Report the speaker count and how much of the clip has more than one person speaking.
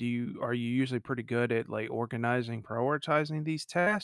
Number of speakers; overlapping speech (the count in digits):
1, no overlap